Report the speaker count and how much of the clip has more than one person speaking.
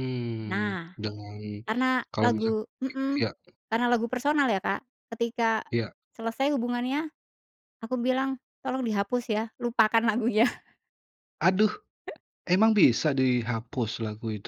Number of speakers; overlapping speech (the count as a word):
two, about 6%